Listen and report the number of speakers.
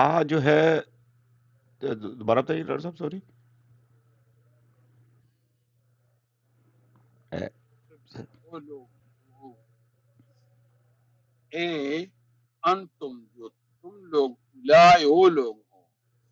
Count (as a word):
two